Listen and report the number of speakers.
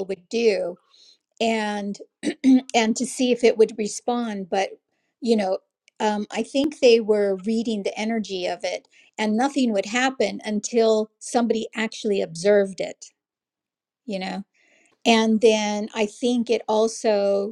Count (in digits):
1